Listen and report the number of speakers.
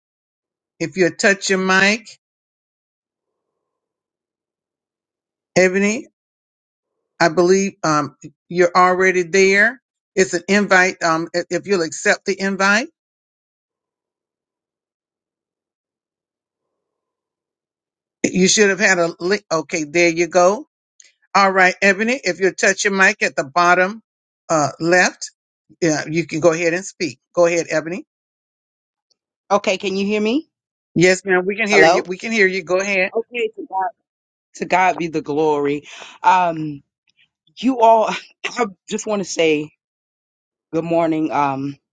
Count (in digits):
2